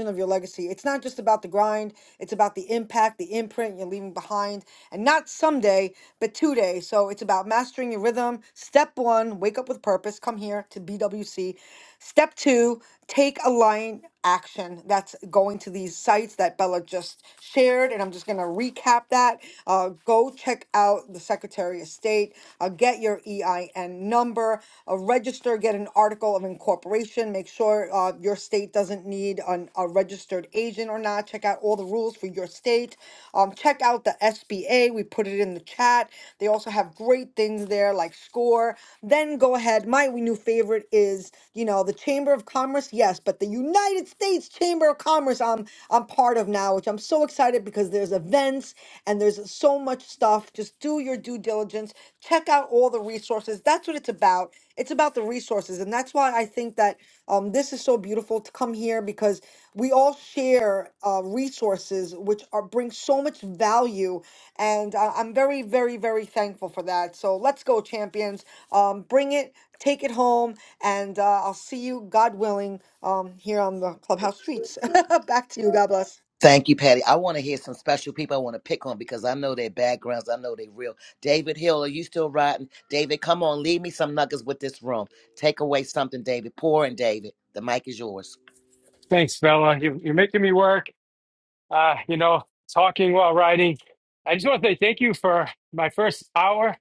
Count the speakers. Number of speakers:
3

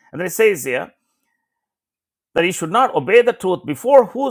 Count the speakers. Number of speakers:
1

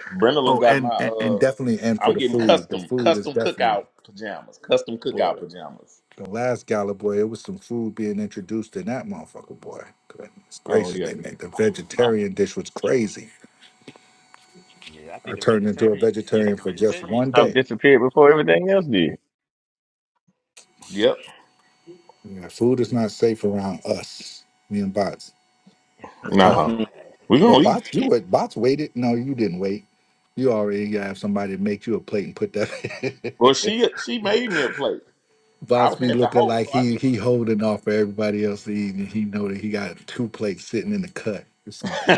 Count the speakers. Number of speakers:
3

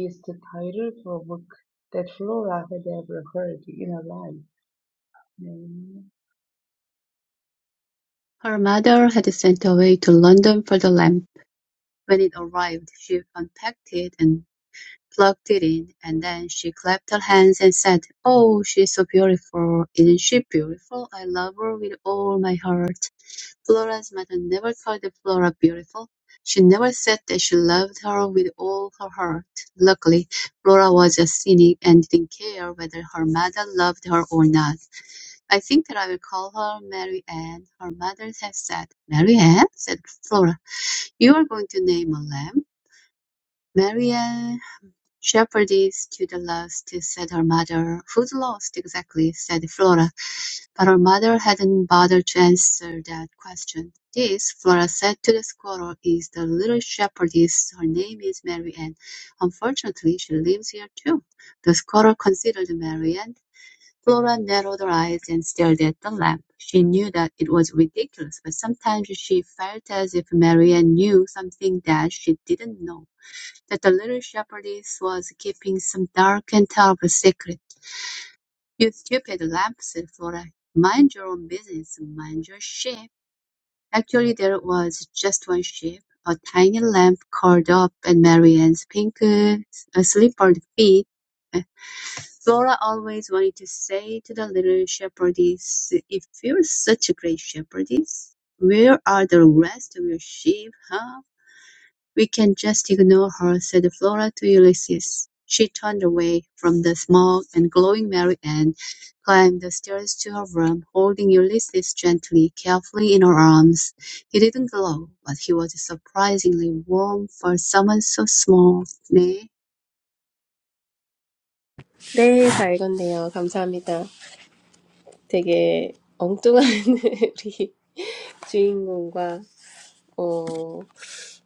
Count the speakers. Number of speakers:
3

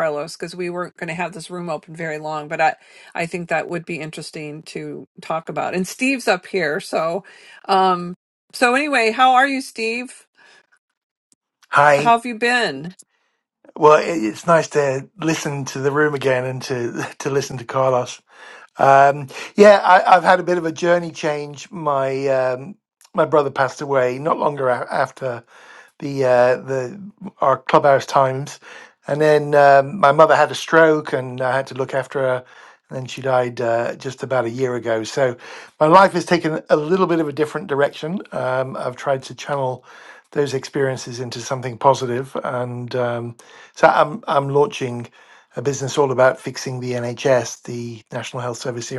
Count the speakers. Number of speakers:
2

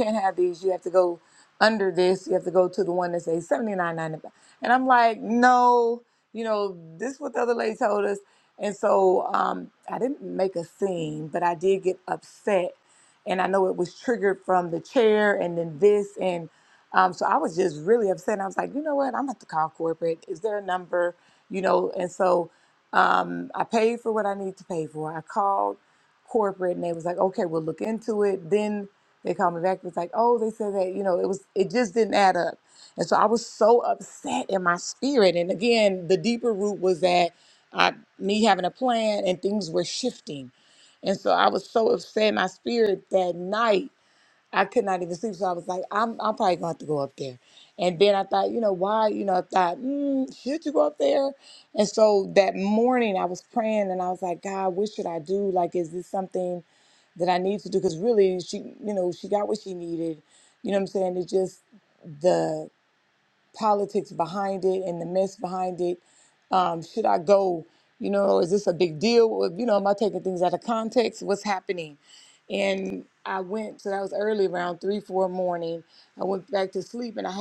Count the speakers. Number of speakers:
1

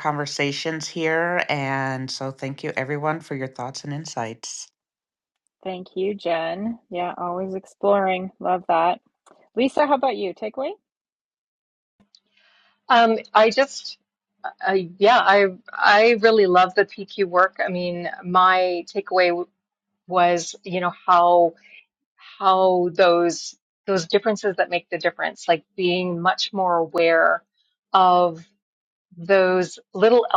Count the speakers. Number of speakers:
3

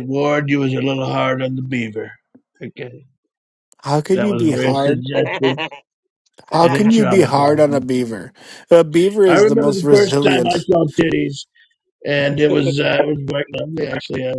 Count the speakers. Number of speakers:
2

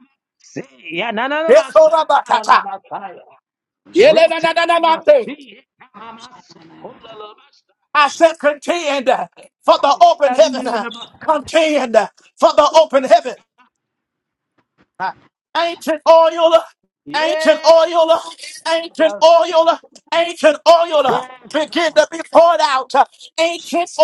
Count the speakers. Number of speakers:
3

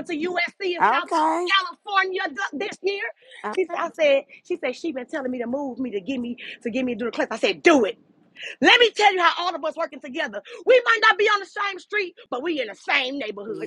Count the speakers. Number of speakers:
2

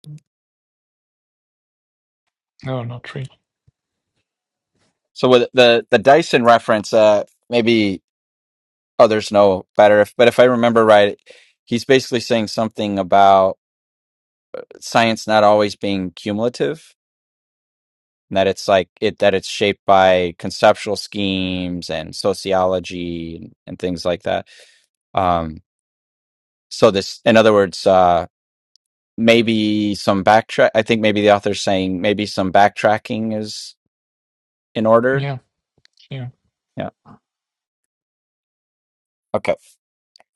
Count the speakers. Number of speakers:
2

